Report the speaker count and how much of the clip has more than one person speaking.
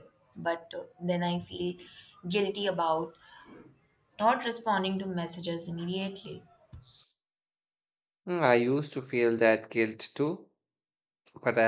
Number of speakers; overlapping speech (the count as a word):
two, no overlap